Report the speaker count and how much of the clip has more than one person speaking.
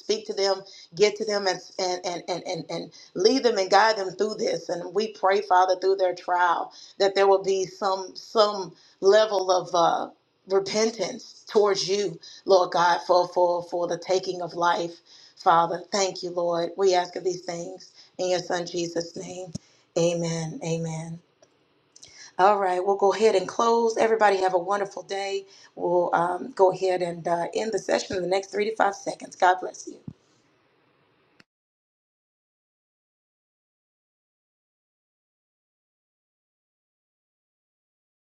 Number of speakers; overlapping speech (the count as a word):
one, no overlap